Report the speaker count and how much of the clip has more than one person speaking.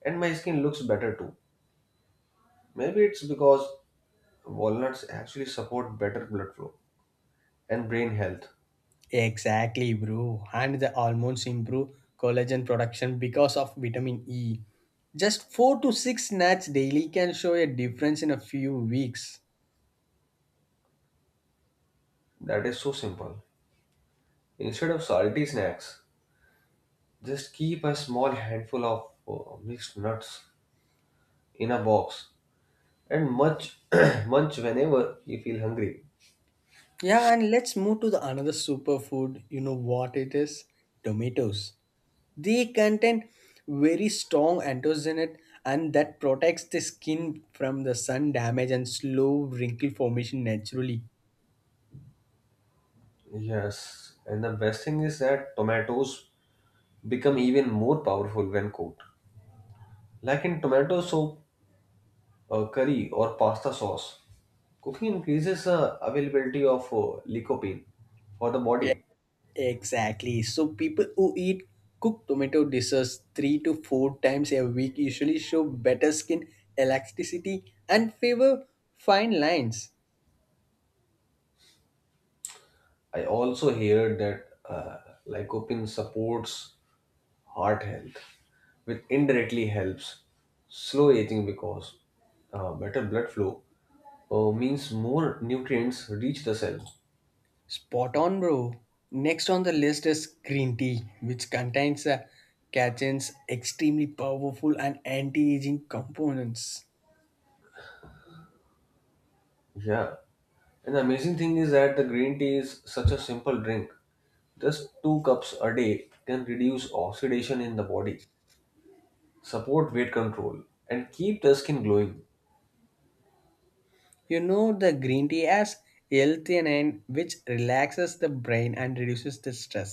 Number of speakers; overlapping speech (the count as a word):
two, no overlap